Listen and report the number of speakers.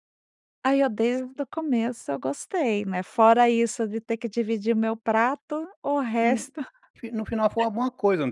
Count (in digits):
2